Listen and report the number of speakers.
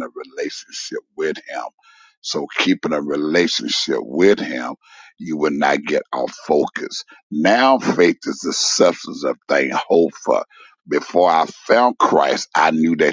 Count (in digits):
1